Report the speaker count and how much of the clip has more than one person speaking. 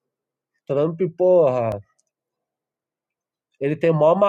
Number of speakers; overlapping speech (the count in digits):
1, no overlap